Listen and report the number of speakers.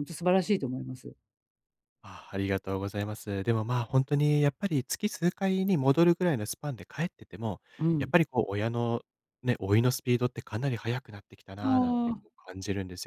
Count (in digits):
2